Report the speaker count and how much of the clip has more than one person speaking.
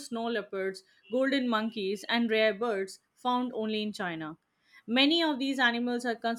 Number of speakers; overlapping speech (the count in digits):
1, no overlap